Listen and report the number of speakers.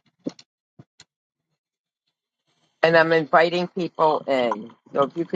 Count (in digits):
1